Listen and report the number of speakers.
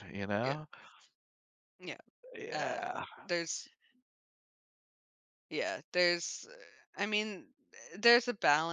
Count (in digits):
2